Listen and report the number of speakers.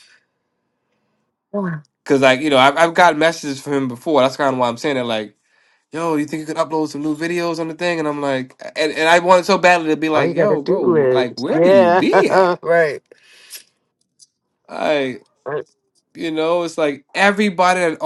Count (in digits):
2